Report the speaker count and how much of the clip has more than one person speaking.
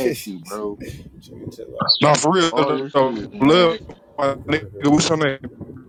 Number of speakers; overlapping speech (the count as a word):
three, about 25%